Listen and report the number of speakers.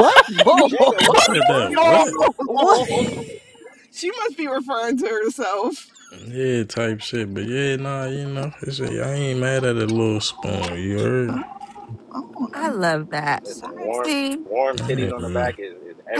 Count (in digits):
5